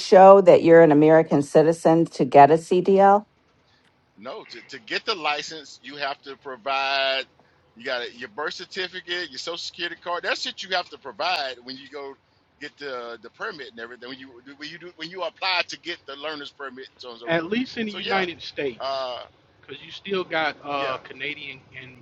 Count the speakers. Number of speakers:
three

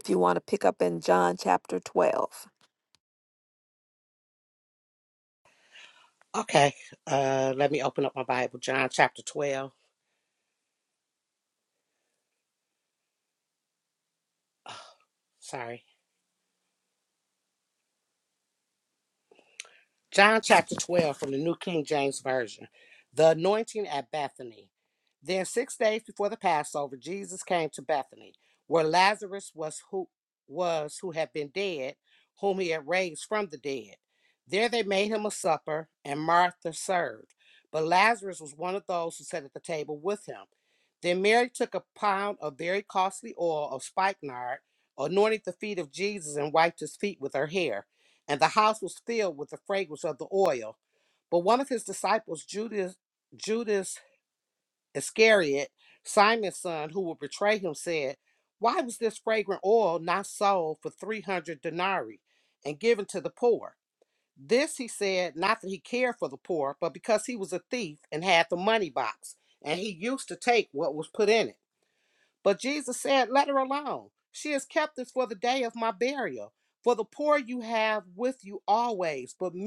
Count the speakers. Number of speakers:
two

